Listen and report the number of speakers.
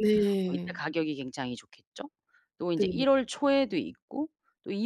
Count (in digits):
2